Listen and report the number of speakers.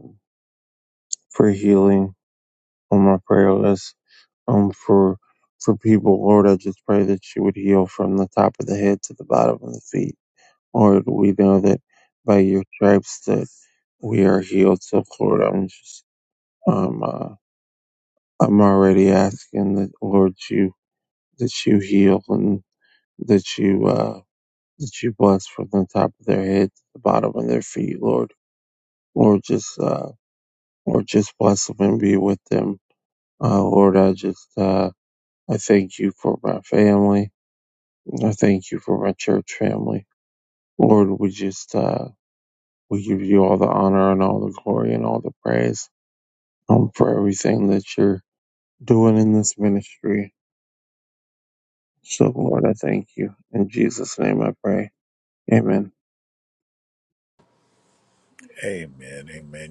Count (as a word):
two